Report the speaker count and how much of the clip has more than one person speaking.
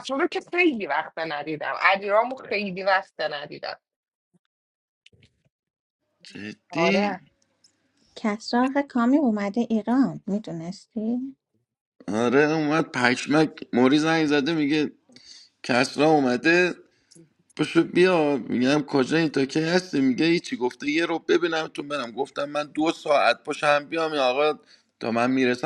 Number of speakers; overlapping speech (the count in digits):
3, about 2%